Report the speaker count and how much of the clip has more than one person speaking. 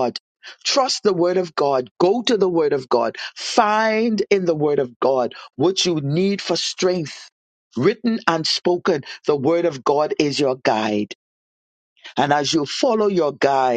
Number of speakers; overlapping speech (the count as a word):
one, no overlap